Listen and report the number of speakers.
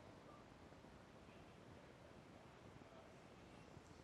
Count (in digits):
0